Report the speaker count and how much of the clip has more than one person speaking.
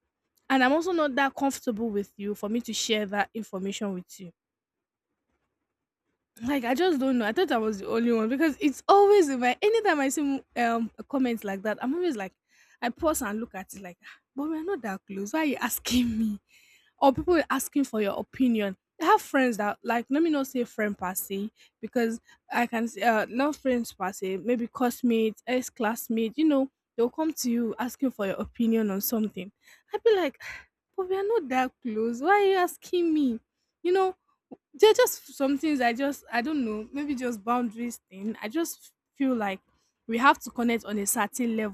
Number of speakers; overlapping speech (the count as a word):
one, no overlap